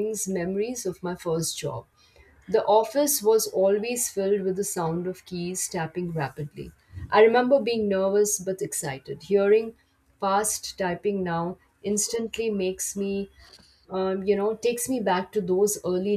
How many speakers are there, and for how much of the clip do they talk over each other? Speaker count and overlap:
1, no overlap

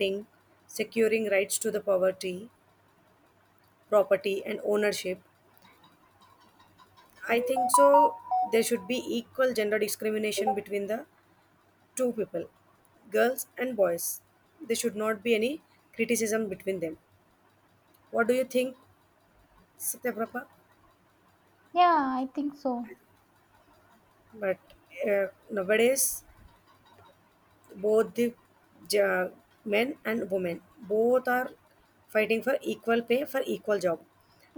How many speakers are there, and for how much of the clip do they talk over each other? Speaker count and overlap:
2, no overlap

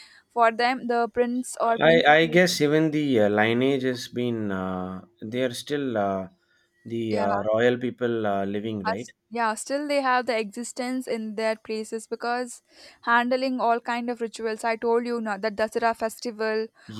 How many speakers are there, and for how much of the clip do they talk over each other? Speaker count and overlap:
2, about 5%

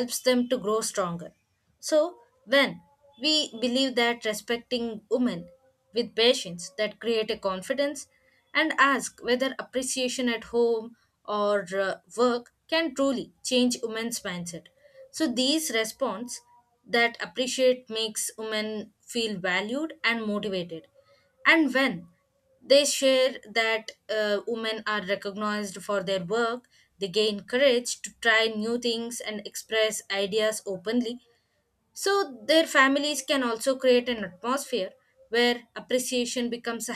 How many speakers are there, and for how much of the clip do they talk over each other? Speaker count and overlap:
1, no overlap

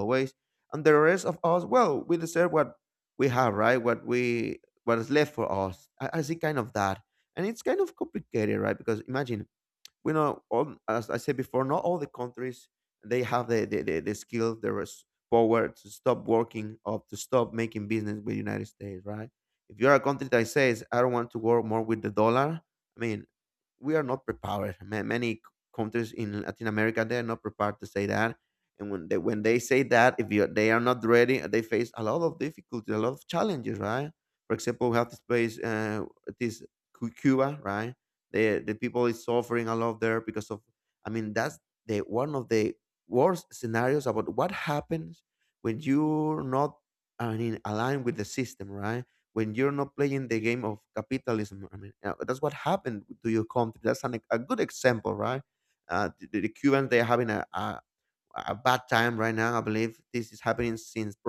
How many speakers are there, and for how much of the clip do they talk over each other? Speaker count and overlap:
1, no overlap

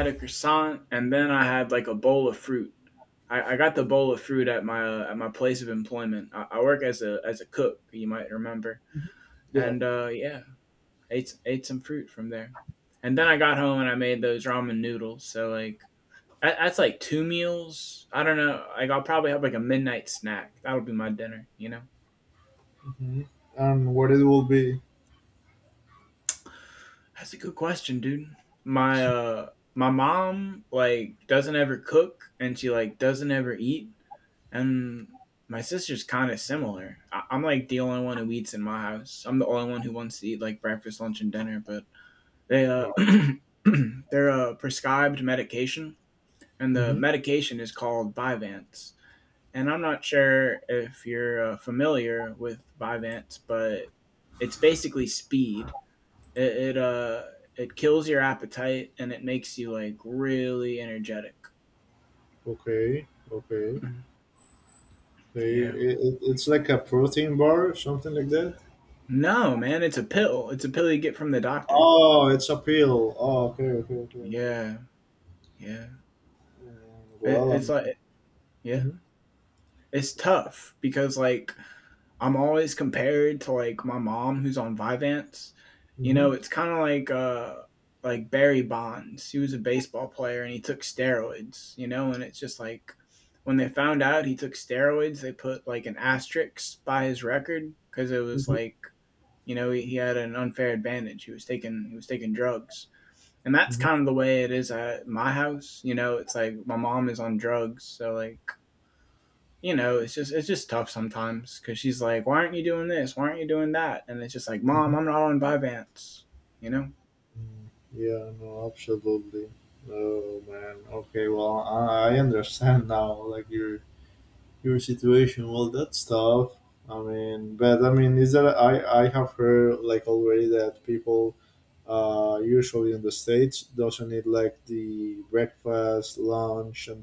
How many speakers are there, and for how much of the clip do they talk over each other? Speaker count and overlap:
2, about 2%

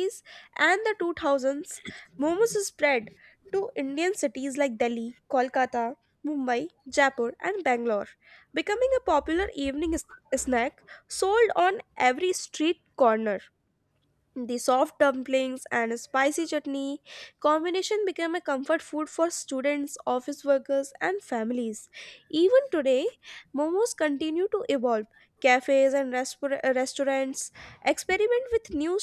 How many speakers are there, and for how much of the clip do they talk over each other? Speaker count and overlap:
1, no overlap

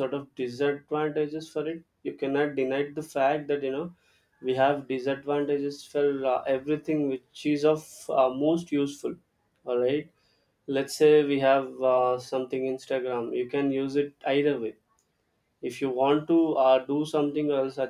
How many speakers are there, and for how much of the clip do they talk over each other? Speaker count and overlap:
1, no overlap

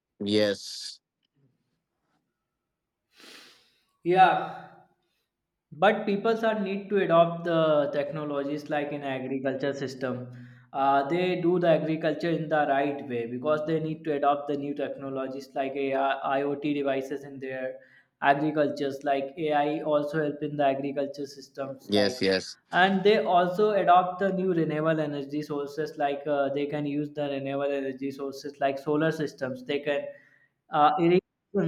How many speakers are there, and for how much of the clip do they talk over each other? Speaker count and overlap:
2, about 1%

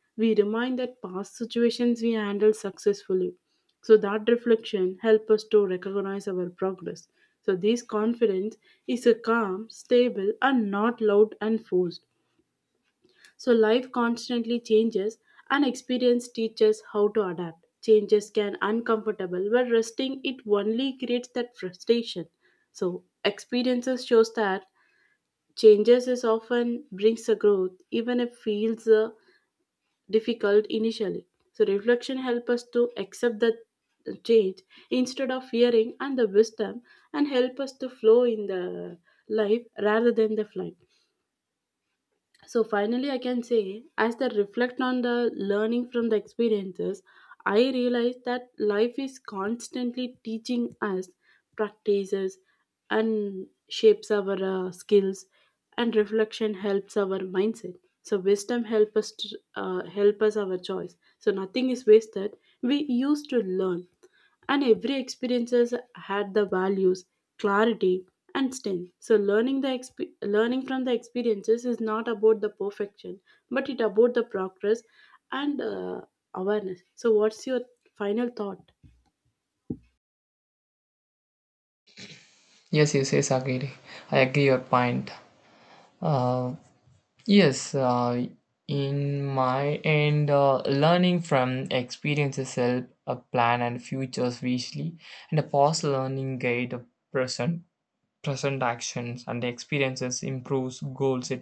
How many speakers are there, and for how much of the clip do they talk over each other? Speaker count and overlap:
2, no overlap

